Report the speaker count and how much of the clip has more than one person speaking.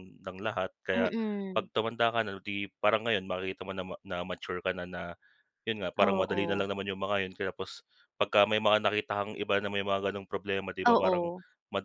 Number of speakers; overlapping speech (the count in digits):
2, about 12%